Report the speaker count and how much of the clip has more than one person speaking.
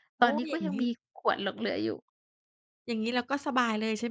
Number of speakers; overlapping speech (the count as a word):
two, about 15%